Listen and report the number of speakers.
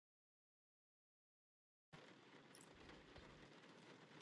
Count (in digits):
0